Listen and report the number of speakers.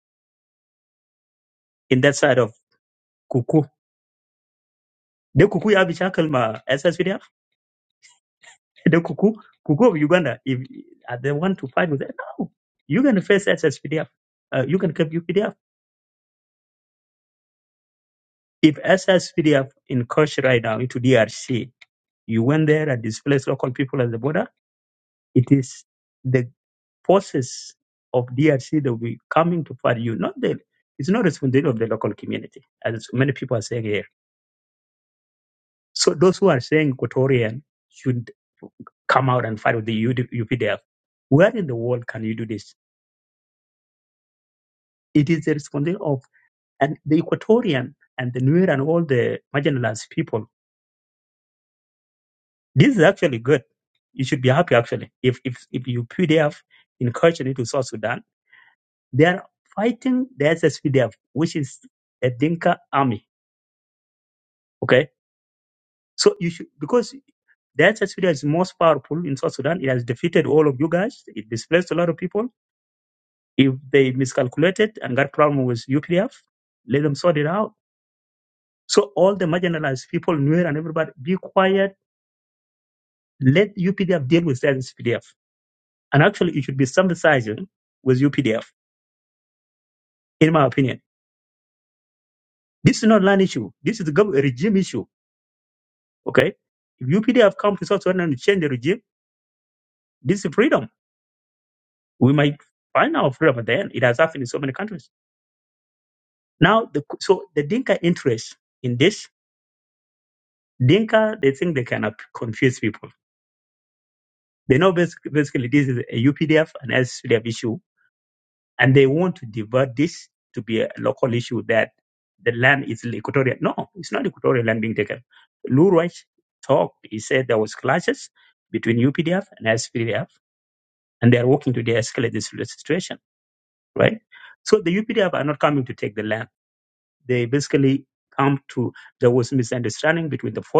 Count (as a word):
one